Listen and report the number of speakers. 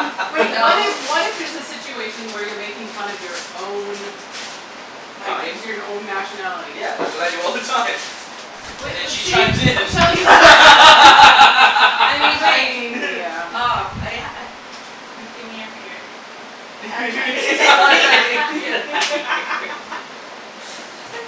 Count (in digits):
3